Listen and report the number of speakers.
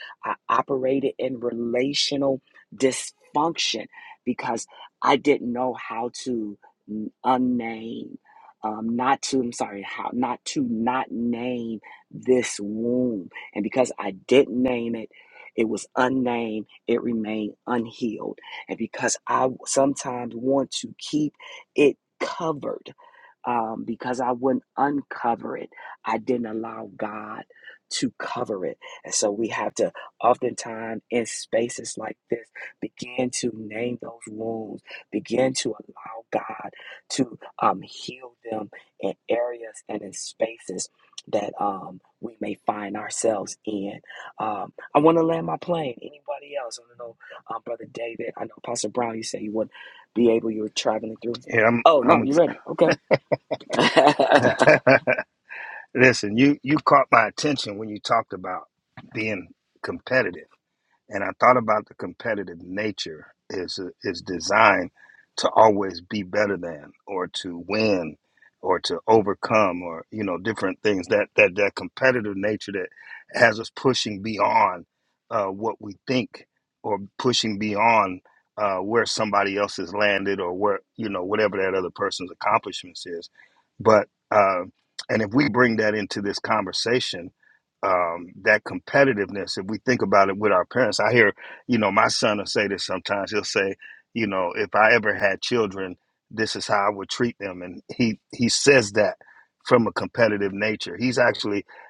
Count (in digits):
2